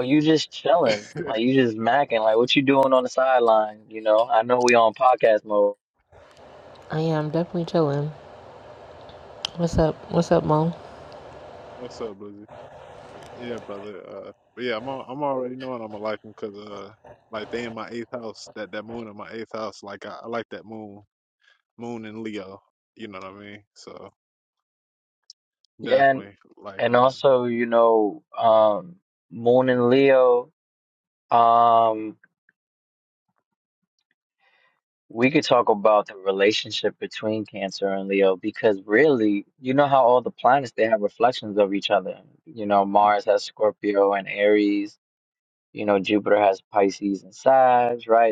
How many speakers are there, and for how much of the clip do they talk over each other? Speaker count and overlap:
3, about 2%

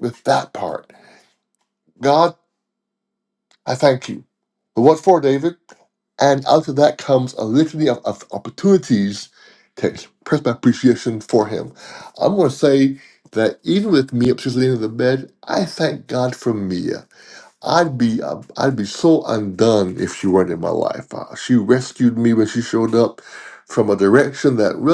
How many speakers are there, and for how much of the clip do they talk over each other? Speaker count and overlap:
1, no overlap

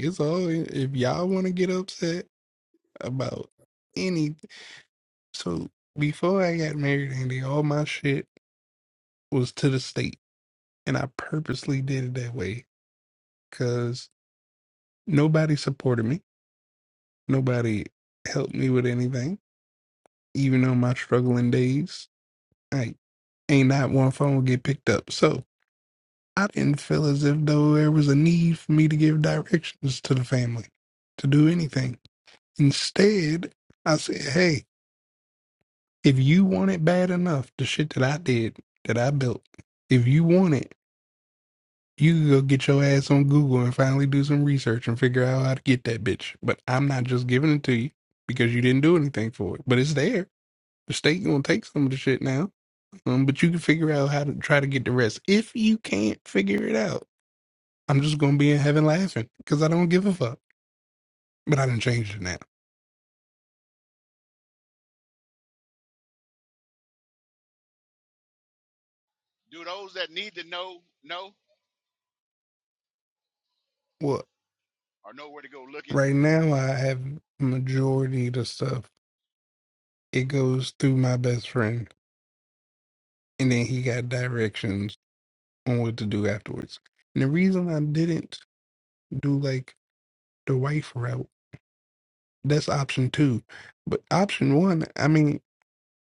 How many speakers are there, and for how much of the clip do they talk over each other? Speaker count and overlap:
2, under 1%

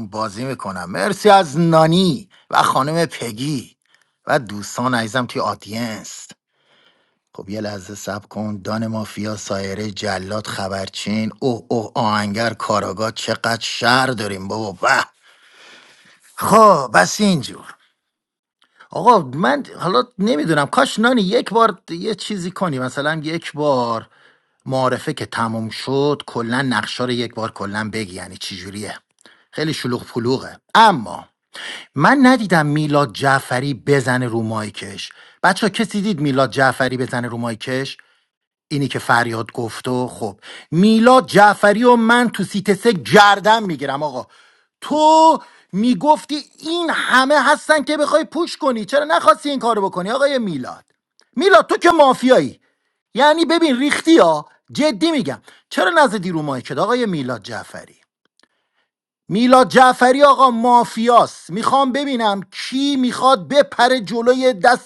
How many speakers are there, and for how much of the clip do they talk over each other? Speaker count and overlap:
1, no overlap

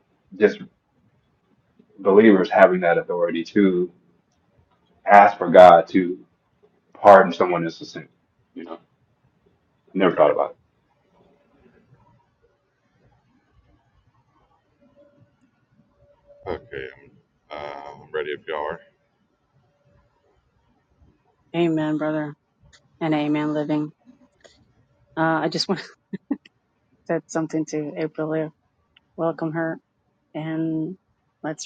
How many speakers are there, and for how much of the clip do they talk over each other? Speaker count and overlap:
3, about 1%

